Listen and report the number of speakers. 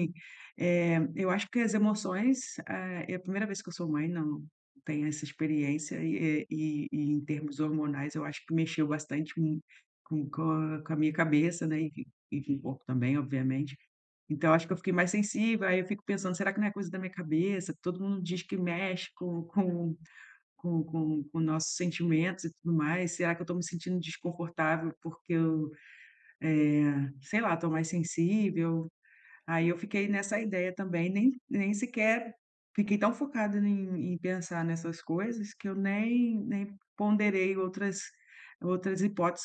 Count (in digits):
1